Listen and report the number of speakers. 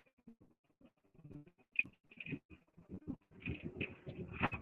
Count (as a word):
zero